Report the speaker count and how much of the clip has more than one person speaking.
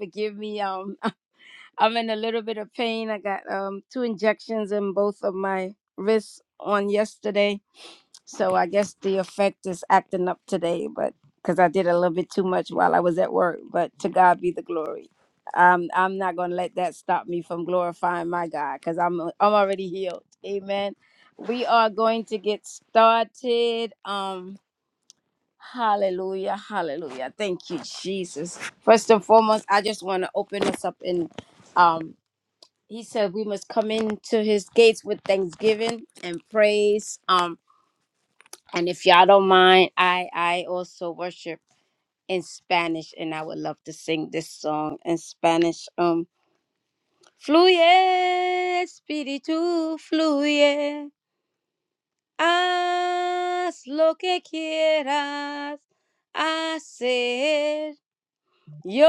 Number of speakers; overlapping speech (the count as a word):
one, no overlap